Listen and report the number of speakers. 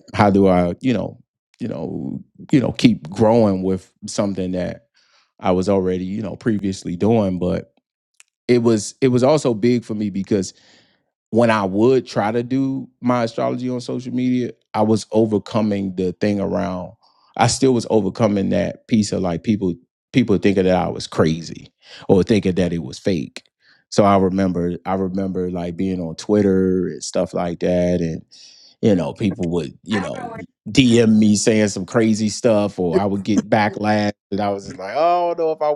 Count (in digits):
1